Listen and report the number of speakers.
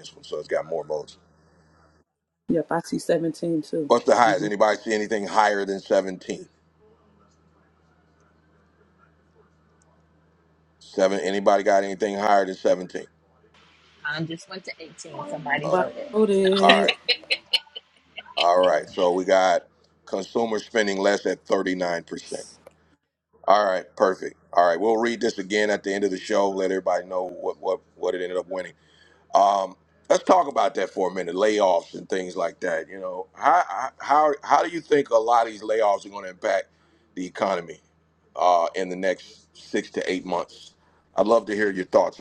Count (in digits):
3